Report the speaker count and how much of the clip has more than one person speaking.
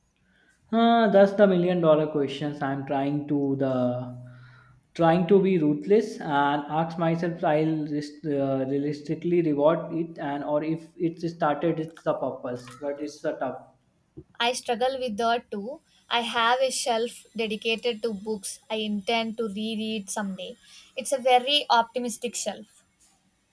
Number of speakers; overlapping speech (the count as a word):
two, no overlap